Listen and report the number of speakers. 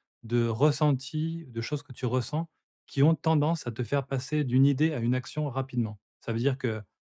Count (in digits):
1